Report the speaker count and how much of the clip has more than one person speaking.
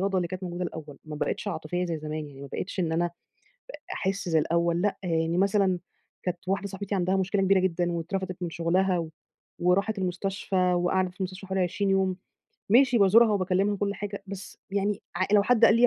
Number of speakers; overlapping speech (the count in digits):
1, no overlap